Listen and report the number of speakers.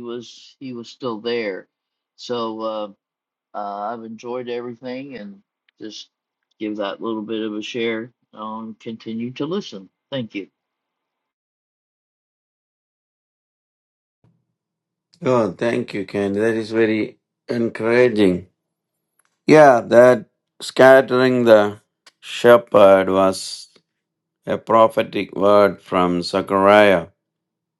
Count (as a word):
two